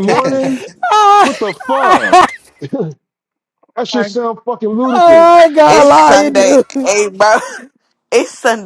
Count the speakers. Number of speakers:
3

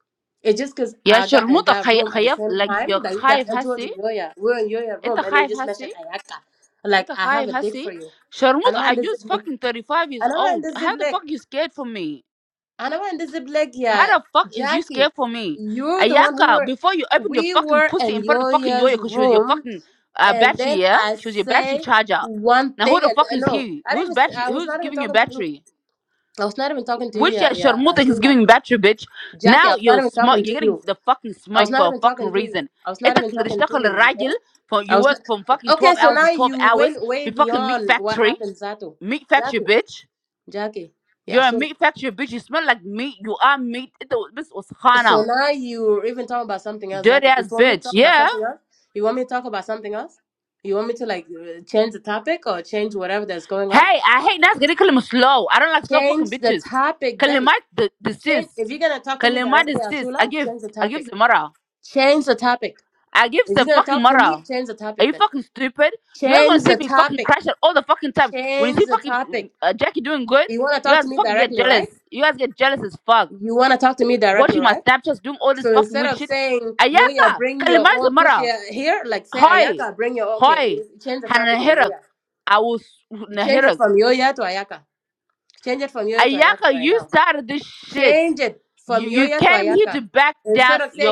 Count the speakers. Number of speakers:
2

